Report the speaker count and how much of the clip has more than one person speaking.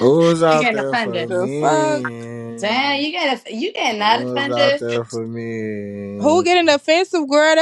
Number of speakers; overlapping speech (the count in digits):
3, about 35%